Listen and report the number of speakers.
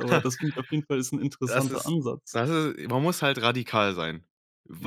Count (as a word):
two